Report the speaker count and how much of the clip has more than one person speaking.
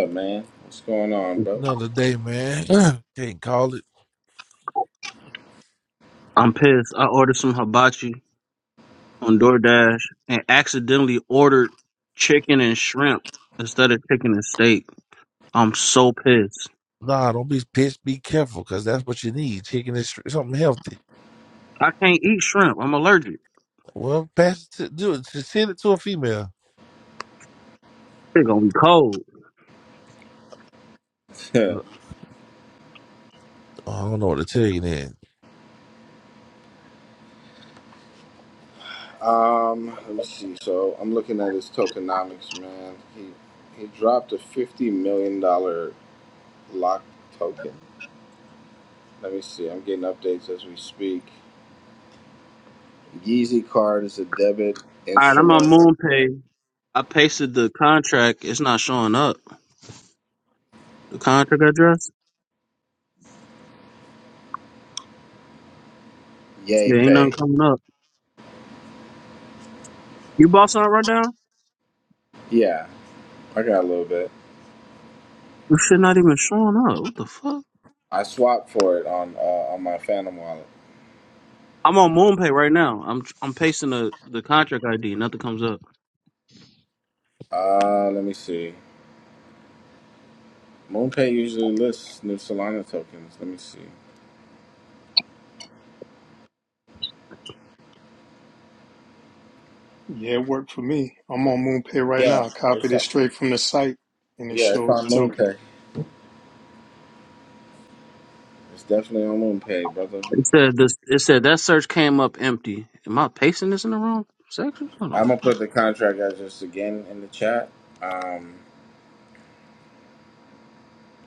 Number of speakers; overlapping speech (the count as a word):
four, about 2%